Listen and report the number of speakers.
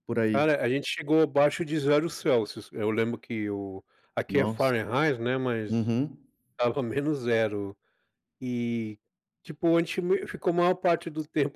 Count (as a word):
two